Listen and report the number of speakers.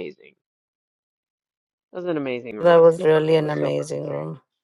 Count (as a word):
two